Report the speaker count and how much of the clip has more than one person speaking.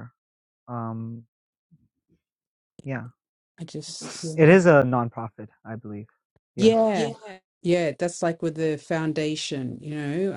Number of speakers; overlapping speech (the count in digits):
2, about 7%